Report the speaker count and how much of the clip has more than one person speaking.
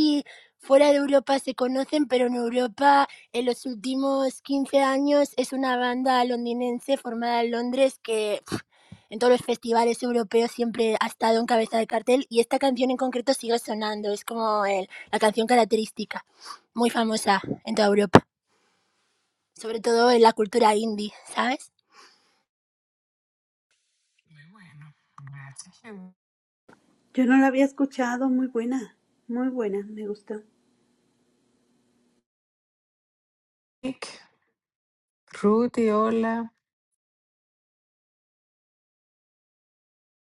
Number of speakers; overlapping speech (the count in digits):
3, no overlap